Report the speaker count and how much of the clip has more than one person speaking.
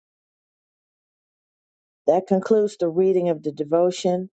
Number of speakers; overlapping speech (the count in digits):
1, no overlap